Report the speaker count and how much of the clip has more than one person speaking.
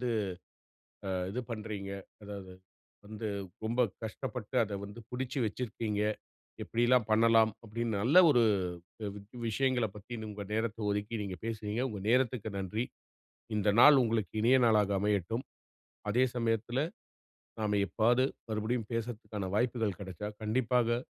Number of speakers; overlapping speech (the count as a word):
one, no overlap